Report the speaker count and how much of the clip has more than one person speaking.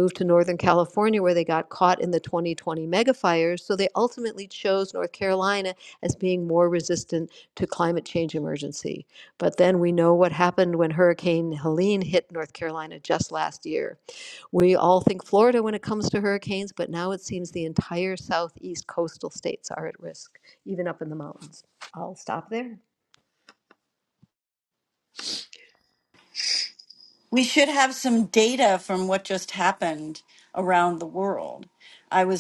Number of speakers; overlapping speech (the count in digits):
2, no overlap